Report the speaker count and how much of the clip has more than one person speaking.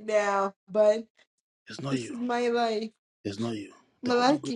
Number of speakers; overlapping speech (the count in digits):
2, about 15%